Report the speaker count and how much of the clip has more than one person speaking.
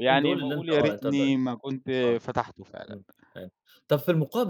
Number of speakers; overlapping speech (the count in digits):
2, about 32%